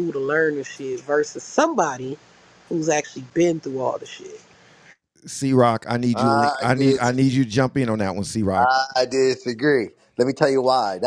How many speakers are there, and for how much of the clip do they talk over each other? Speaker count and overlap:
three, about 13%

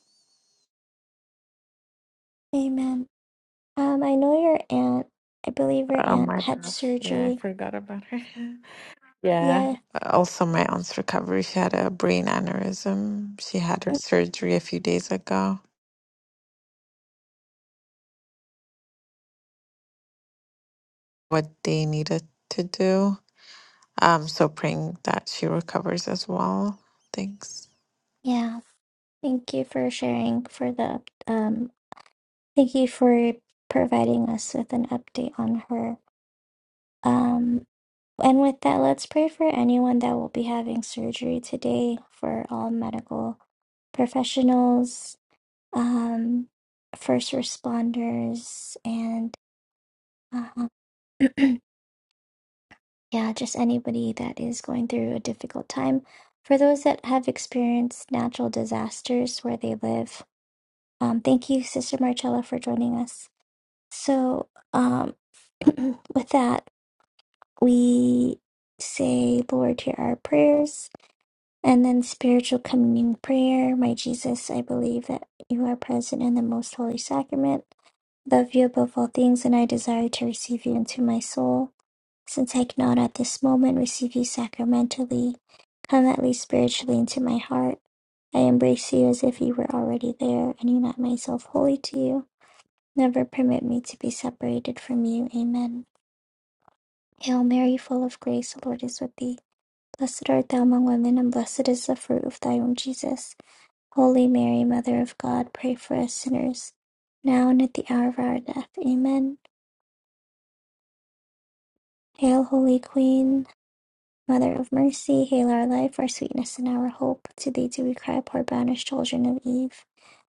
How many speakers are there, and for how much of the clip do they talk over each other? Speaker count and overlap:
two, about 2%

